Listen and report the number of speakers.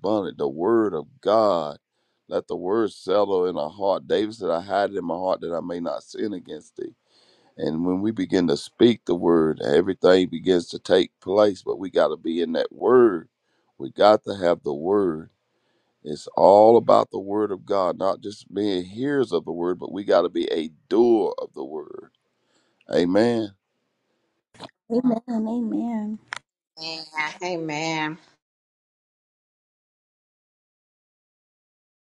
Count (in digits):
3